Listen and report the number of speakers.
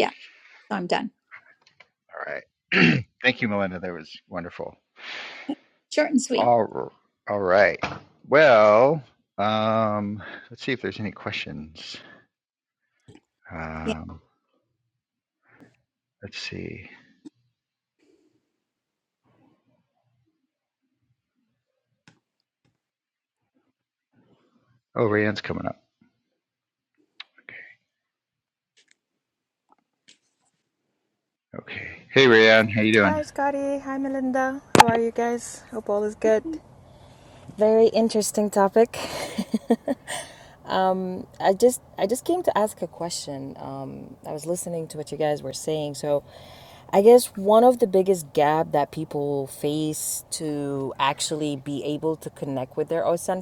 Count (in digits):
3